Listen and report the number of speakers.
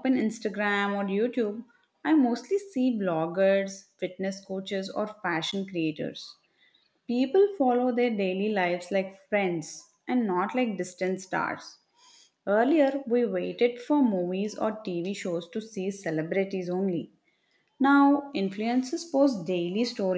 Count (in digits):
1